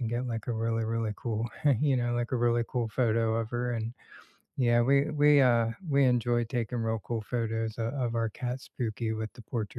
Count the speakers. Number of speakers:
one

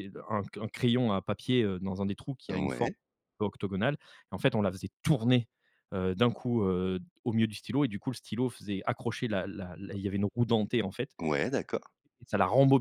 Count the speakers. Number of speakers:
two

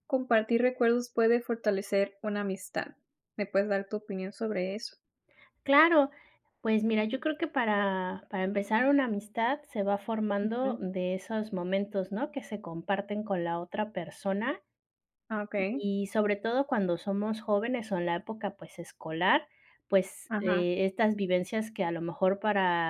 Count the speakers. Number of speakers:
two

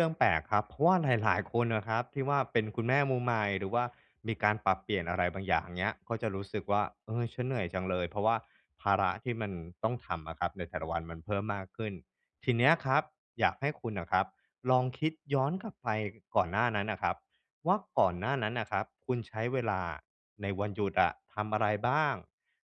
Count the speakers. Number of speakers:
one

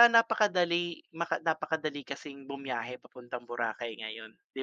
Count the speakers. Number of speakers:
one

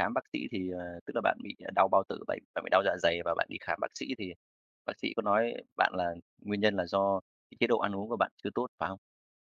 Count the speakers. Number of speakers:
one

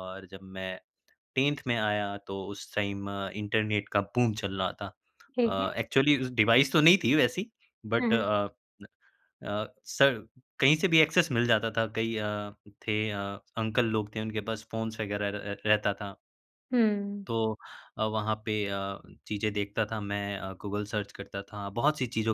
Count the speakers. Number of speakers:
two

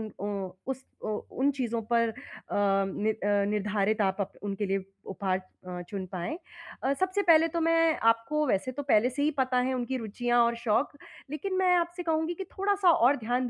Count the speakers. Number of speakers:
one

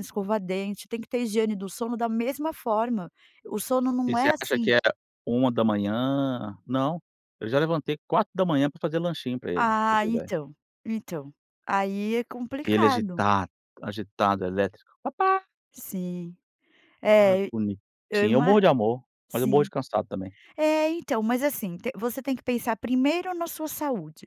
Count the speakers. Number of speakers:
two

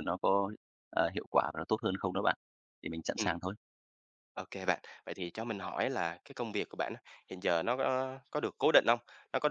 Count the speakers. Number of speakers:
two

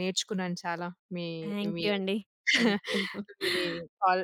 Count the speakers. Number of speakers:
two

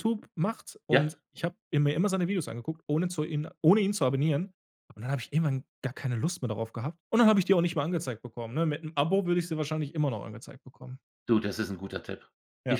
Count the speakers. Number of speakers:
two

